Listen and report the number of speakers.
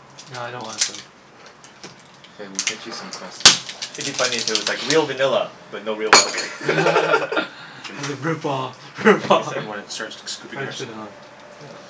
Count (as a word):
four